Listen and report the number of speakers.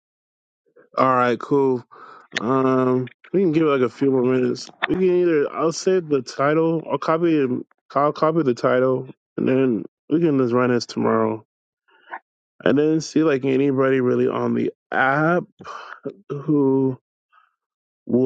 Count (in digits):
1